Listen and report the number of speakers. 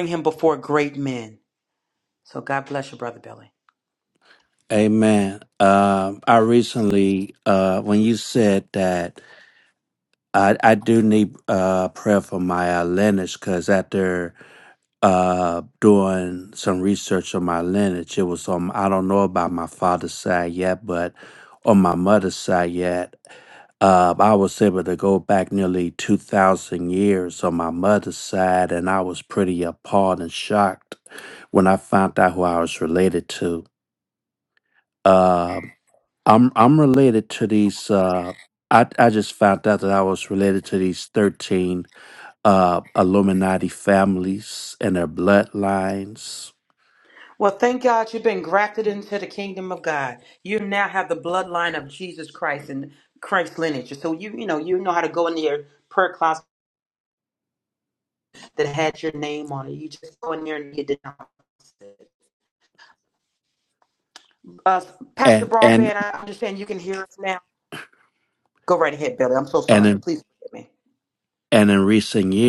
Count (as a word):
two